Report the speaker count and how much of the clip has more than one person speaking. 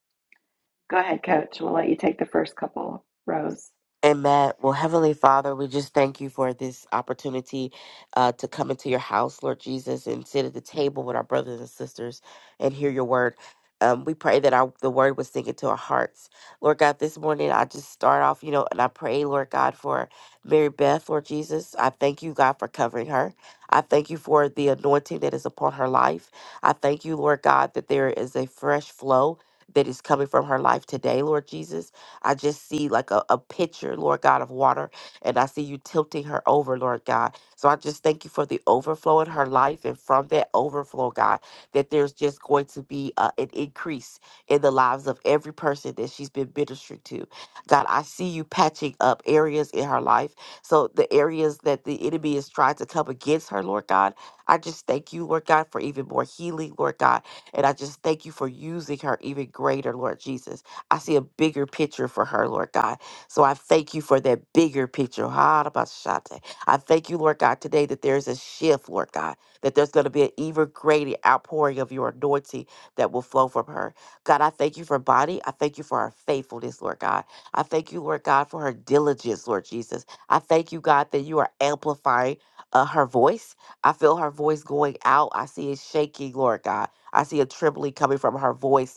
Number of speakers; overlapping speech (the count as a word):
two, no overlap